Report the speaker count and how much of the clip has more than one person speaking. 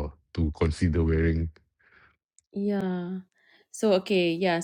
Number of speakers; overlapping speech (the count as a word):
two, no overlap